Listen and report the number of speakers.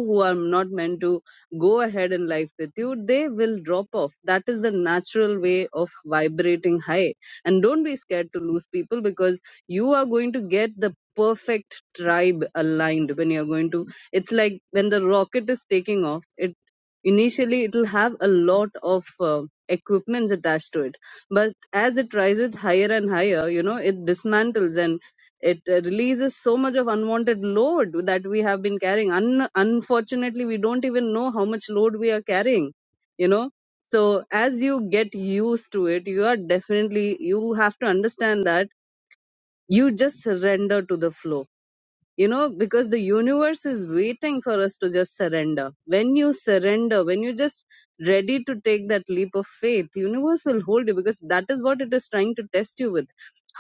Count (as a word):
one